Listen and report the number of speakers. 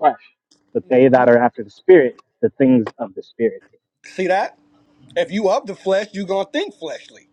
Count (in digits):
2